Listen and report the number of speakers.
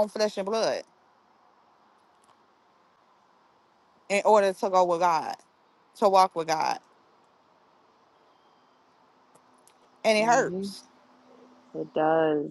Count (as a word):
two